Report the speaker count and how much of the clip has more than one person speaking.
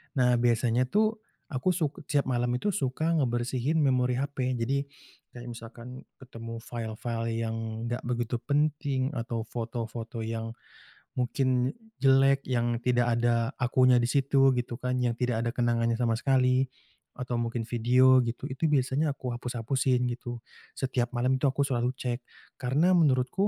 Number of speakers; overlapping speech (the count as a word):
one, no overlap